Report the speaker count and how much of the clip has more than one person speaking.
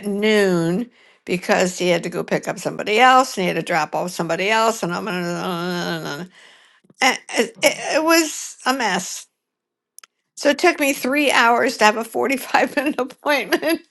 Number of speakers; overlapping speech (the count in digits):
1, no overlap